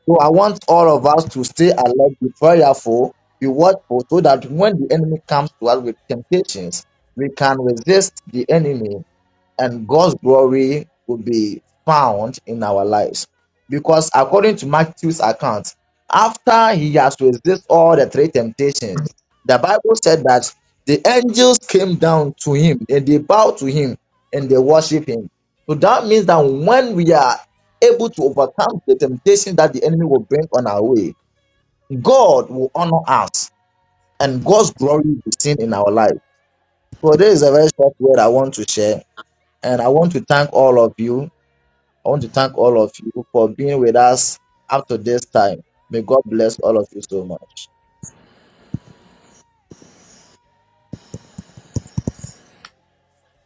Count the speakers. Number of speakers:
one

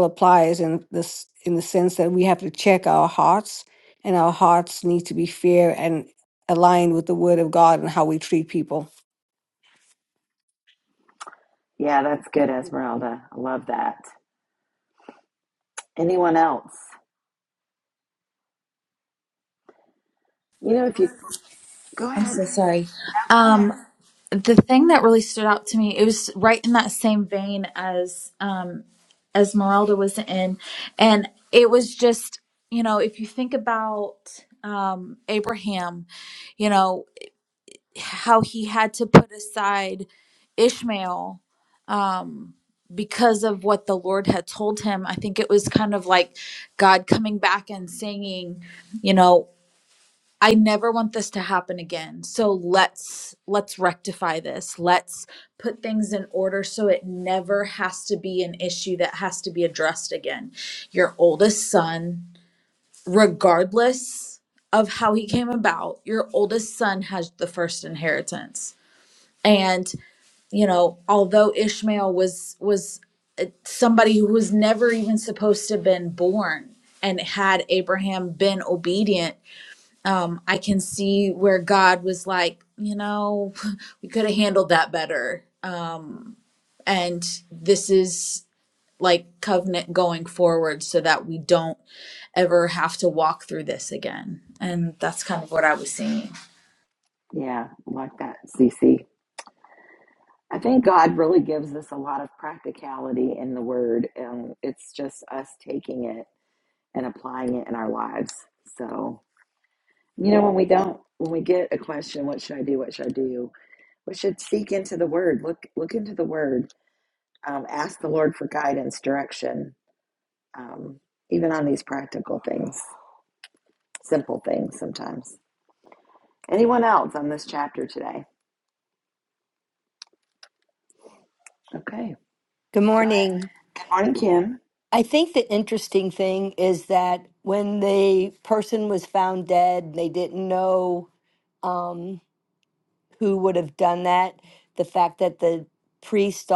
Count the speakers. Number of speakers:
four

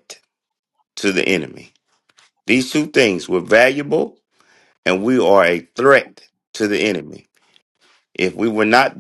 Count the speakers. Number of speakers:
one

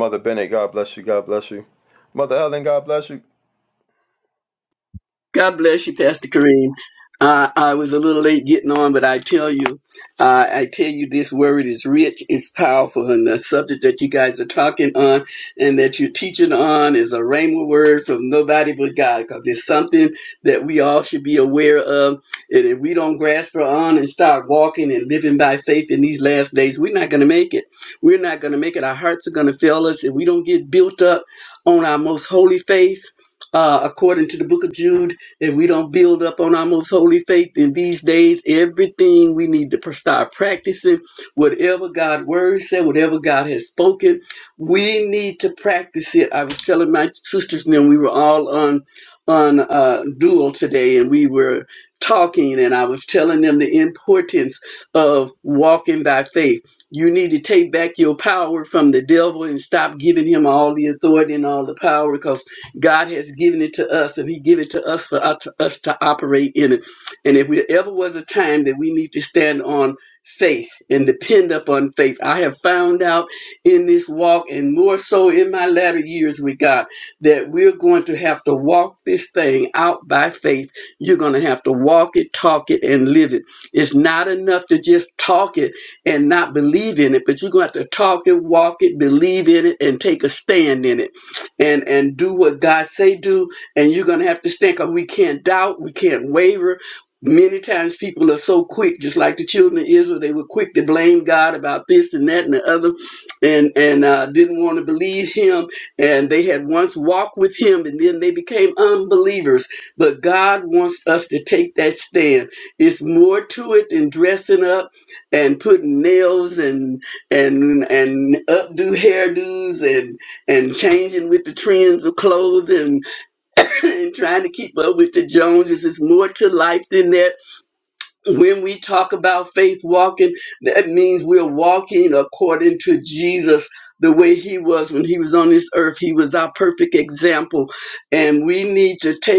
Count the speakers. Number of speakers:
two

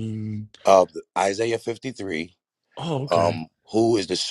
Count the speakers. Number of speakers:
two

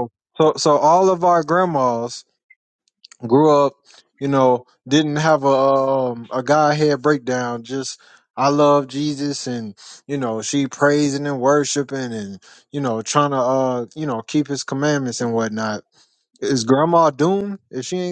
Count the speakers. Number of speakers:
one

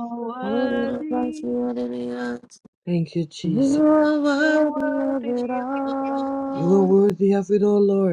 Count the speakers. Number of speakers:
three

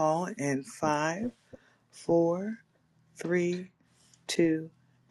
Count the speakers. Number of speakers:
one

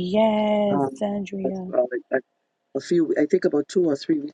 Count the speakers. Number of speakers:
two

